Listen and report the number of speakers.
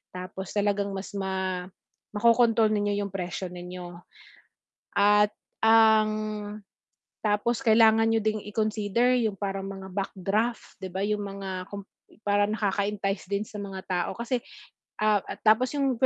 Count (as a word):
one